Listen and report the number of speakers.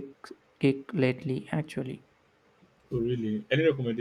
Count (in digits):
2